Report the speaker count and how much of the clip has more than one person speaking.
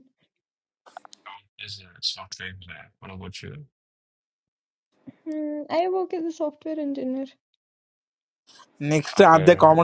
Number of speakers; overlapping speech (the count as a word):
three, about 3%